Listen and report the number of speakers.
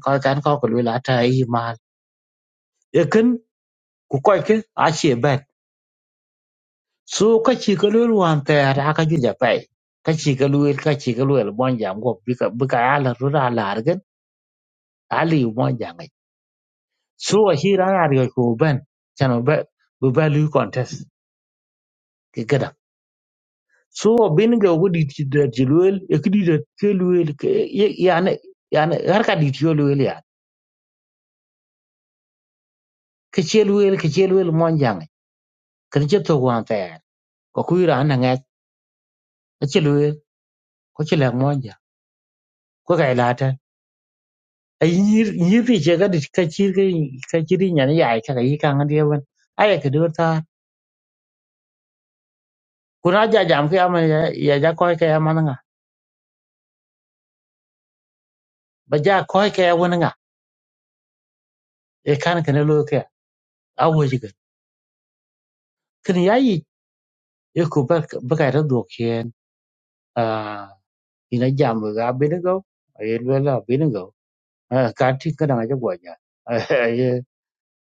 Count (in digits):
1